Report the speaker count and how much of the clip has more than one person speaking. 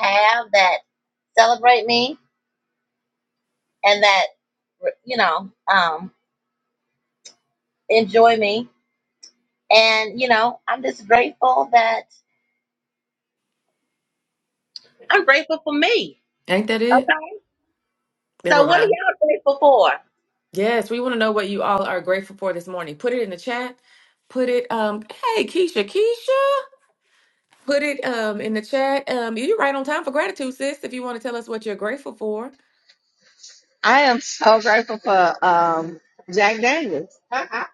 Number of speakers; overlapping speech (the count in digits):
3, about 2%